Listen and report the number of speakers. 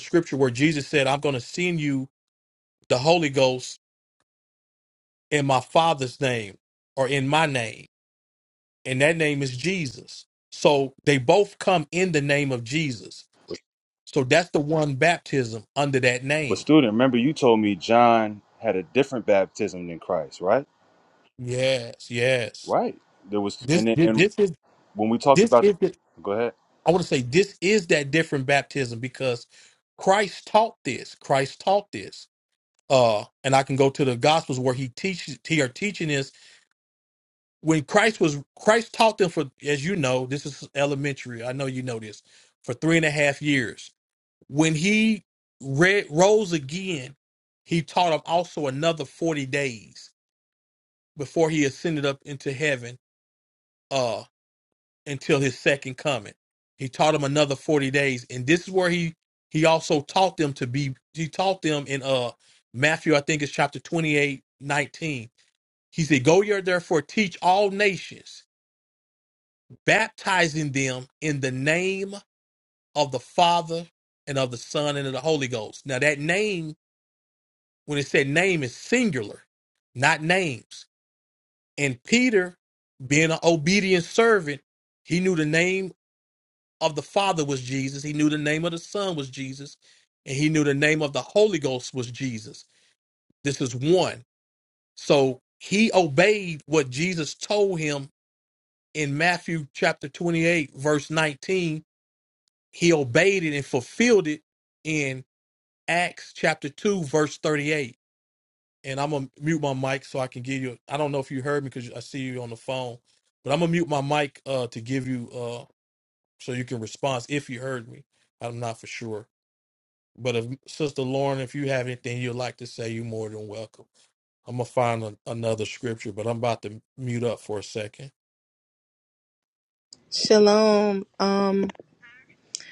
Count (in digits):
3